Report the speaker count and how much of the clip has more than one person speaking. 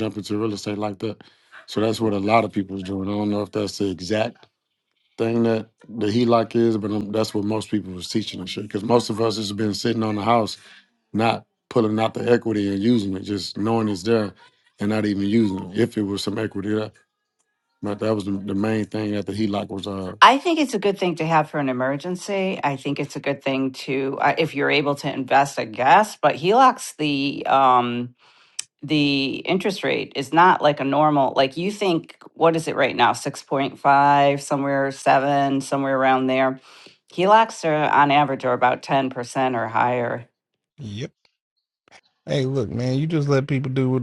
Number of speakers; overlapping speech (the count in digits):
3, no overlap